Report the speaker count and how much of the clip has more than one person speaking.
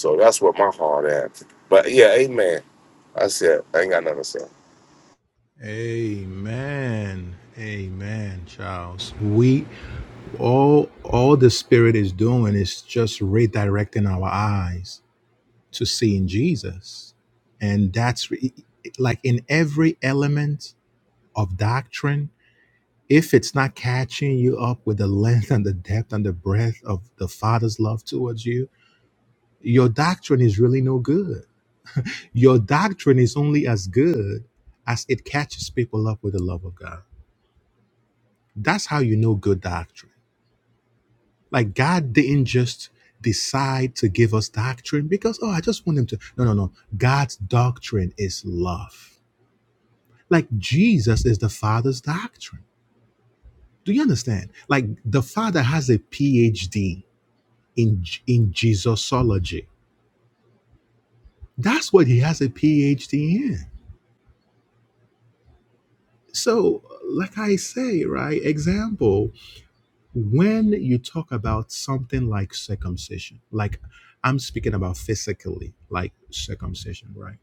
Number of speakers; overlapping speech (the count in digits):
2, no overlap